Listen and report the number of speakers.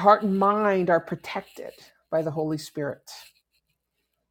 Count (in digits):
1